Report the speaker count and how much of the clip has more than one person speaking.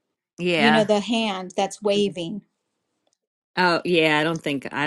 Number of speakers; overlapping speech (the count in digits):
2, about 6%